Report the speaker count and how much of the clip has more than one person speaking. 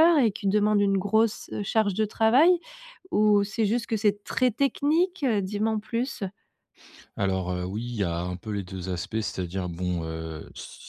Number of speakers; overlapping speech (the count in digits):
2, no overlap